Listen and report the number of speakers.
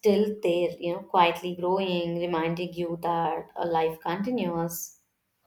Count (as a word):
one